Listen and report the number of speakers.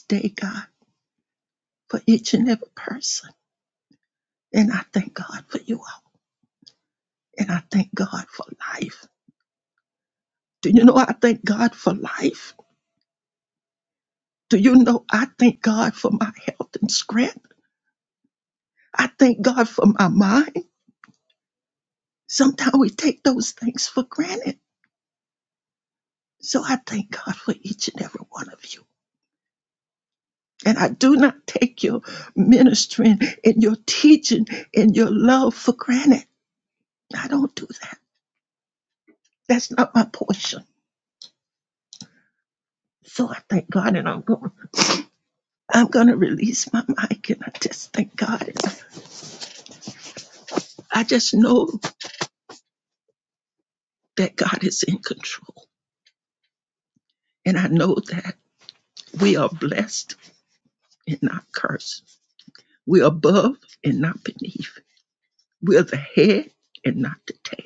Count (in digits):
1